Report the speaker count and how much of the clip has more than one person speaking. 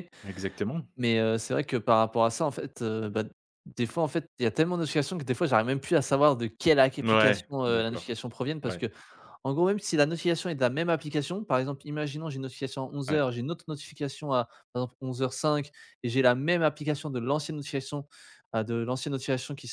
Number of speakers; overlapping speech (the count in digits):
2, about 7%